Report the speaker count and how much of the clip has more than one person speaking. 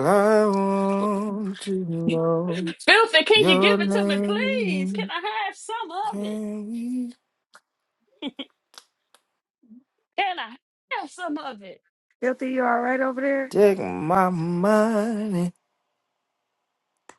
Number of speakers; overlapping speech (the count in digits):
3, about 10%